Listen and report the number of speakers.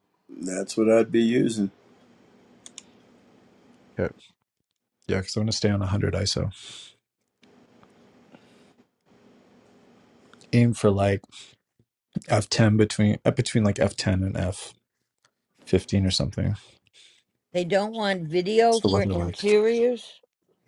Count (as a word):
three